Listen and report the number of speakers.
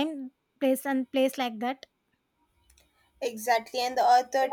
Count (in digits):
2